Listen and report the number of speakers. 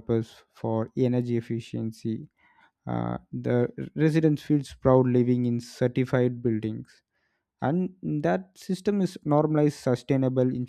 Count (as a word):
one